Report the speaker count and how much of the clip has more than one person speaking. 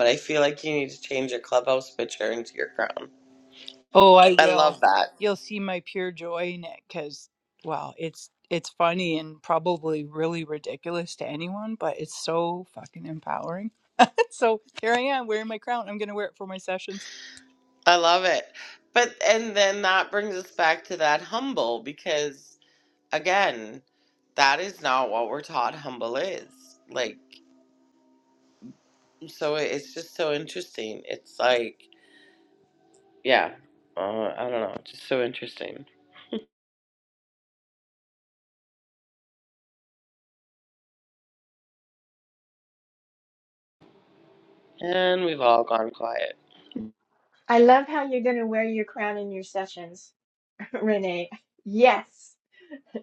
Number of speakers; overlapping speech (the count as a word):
three, about 1%